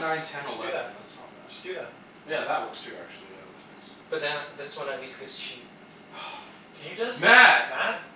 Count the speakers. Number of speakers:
3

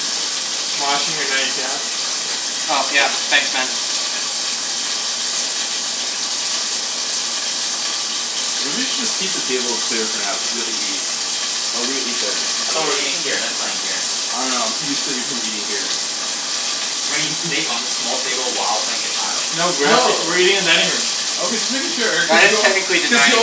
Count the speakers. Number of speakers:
4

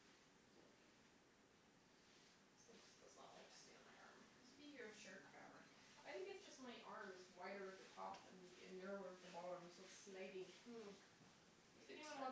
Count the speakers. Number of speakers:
2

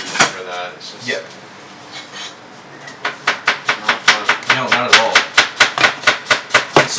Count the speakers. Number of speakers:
2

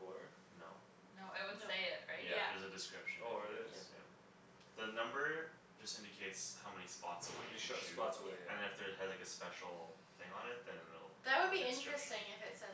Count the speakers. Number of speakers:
4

